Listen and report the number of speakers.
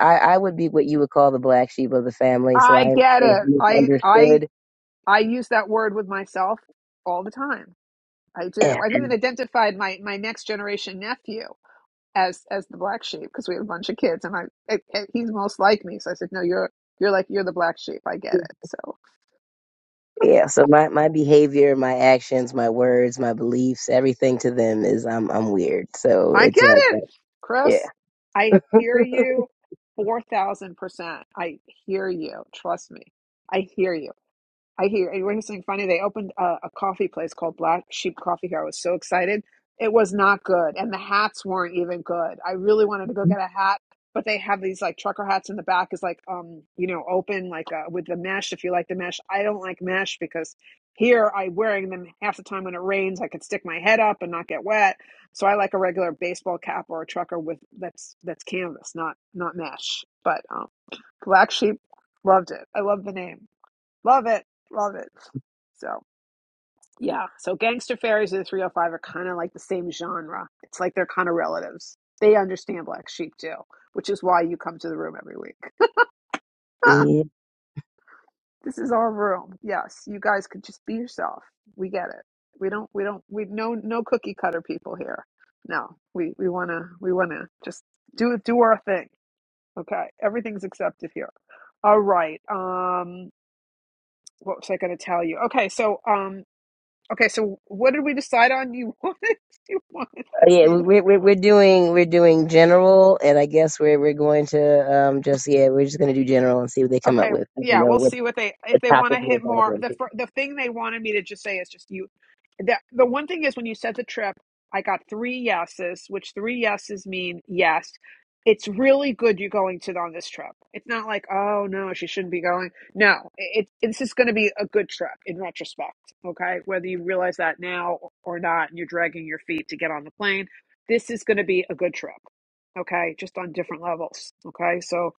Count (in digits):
2